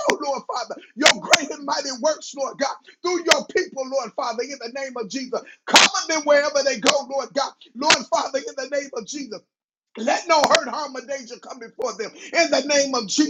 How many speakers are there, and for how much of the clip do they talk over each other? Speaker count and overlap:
1, no overlap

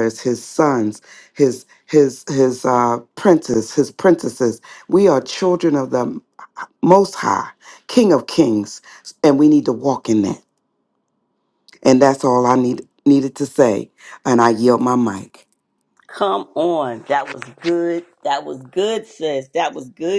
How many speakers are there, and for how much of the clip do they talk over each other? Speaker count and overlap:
2, no overlap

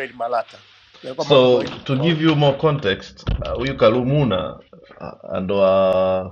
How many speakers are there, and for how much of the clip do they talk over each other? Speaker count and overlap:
2, about 16%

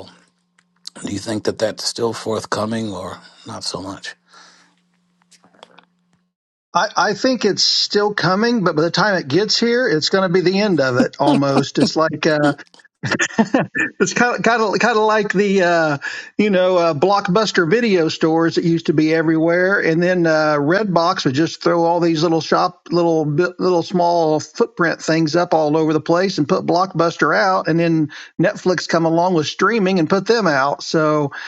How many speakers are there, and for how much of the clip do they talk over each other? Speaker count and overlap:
2, no overlap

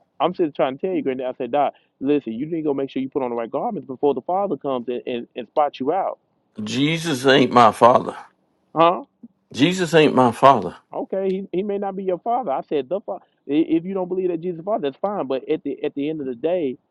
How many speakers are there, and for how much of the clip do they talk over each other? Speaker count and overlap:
2, no overlap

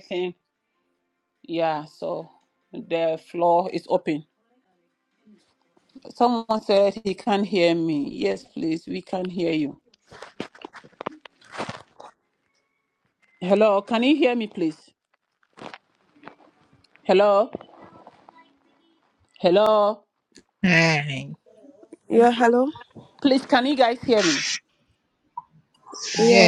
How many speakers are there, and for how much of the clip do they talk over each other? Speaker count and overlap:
3, about 1%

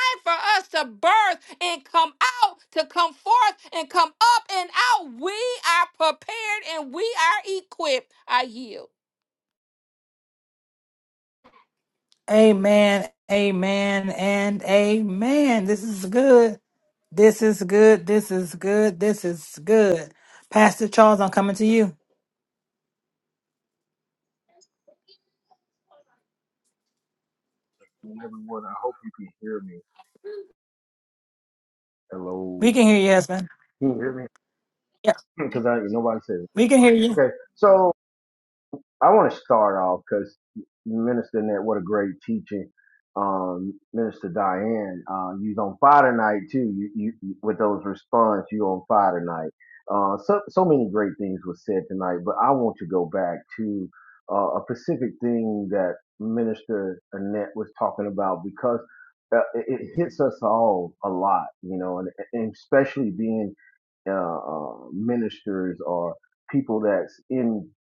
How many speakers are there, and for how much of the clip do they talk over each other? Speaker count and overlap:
3, under 1%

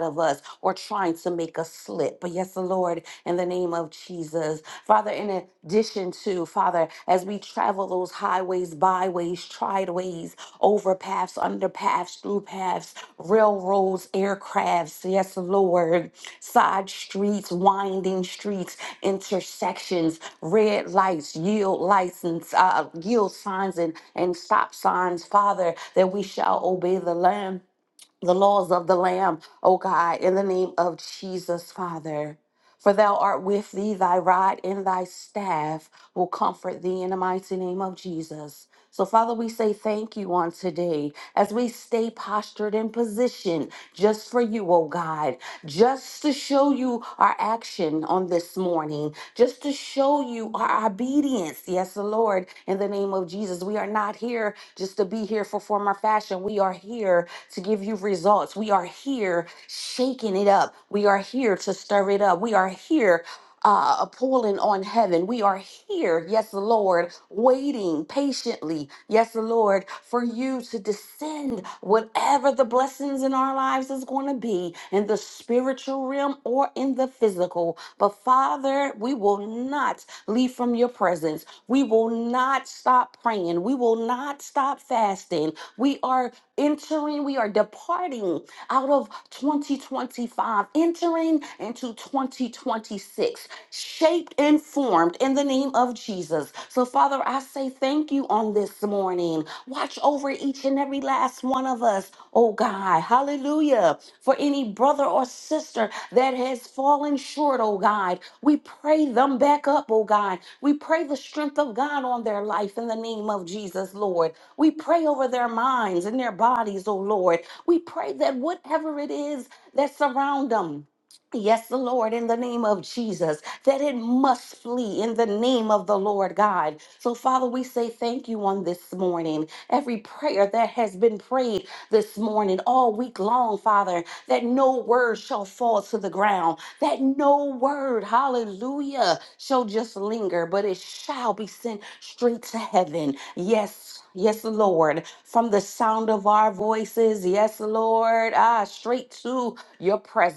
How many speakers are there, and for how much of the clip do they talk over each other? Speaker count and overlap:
1, no overlap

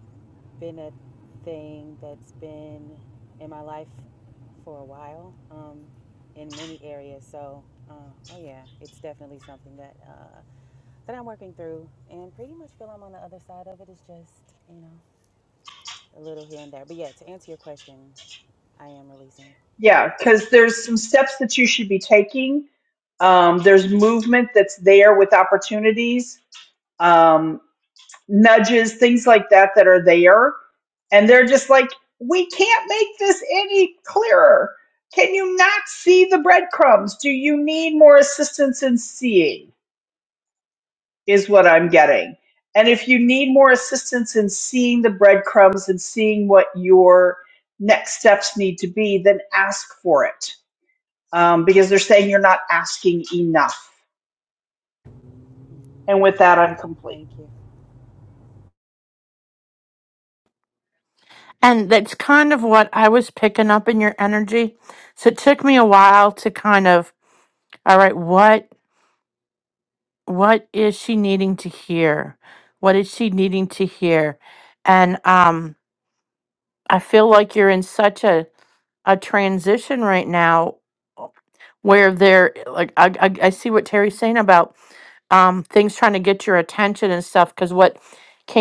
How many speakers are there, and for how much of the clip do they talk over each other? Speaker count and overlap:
3, about 1%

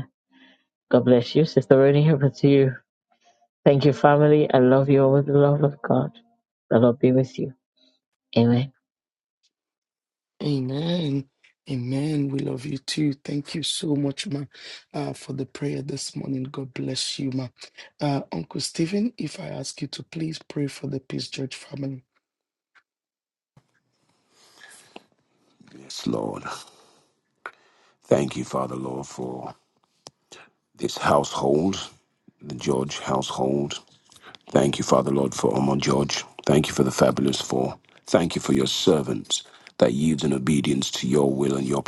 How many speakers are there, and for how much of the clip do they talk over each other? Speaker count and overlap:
3, no overlap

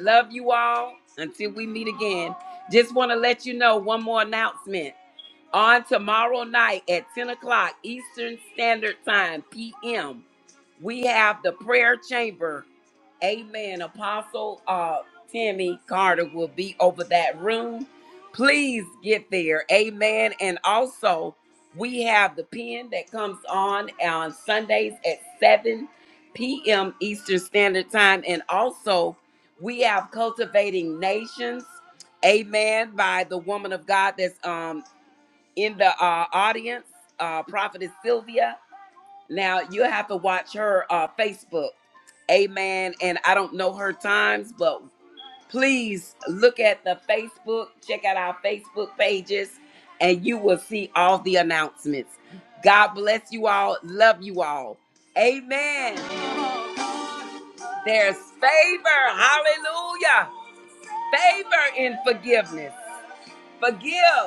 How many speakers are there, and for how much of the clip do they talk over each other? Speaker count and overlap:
1, no overlap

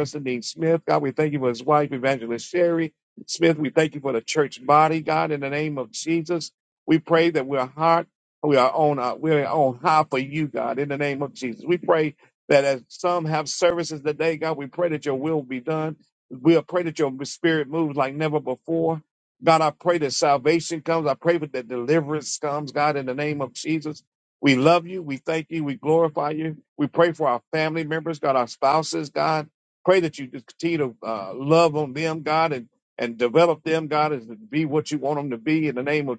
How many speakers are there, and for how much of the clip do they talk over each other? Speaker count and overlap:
1, no overlap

